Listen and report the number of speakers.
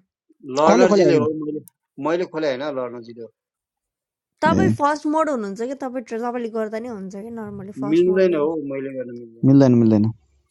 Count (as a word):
three